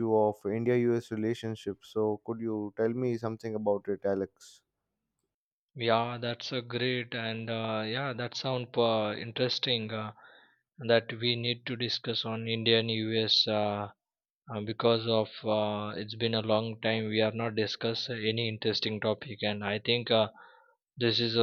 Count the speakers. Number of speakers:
two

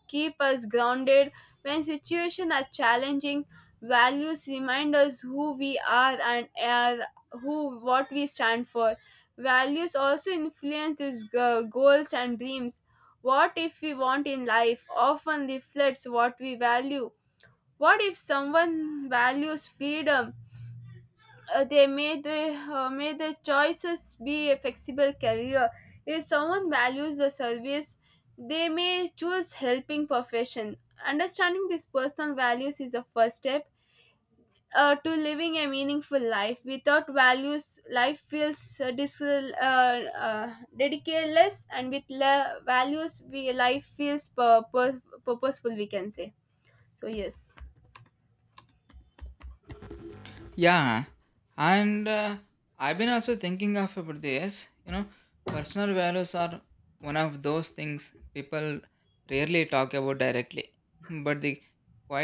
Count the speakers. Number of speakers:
two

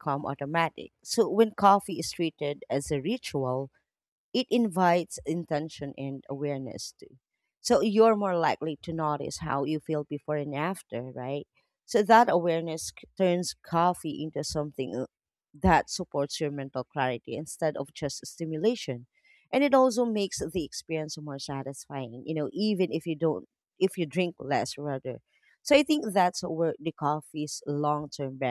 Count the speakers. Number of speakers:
one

